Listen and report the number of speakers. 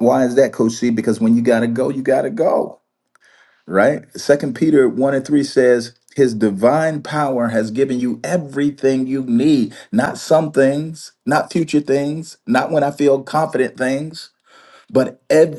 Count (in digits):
1